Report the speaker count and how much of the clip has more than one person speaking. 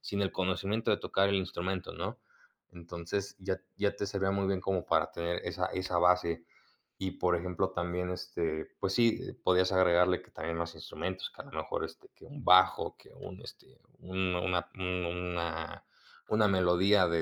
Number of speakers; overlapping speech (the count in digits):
1, no overlap